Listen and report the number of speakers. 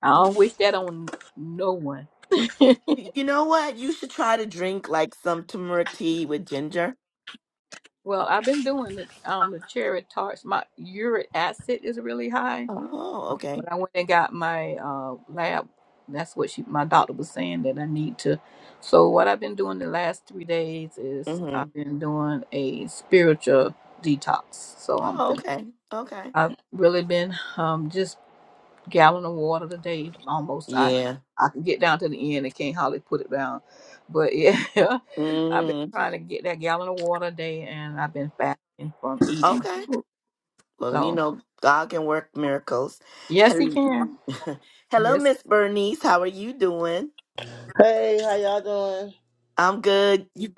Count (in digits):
3